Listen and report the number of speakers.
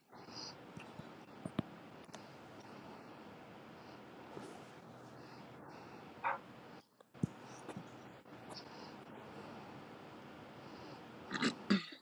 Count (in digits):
0